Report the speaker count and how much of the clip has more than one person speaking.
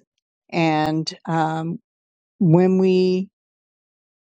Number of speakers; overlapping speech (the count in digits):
1, no overlap